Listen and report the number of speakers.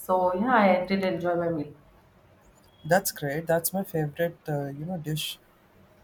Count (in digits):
2